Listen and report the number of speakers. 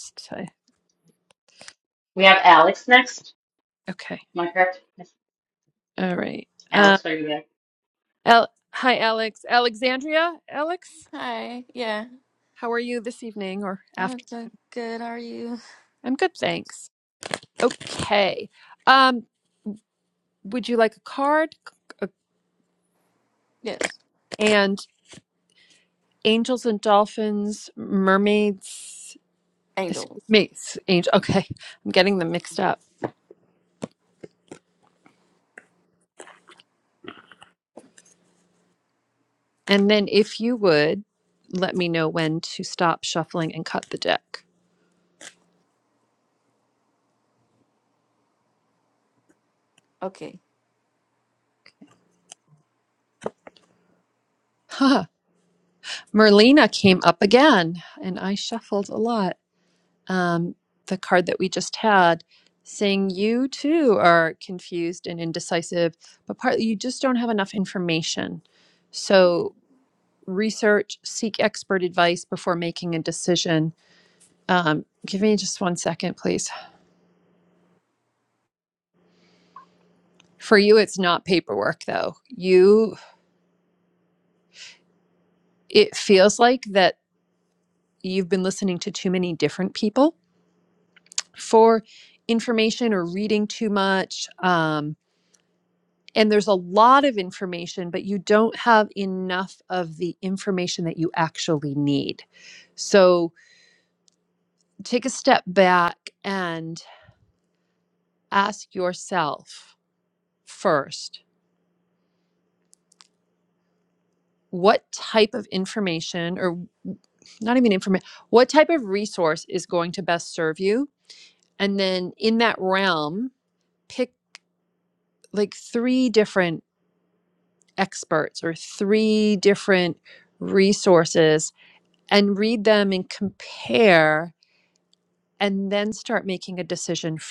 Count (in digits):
3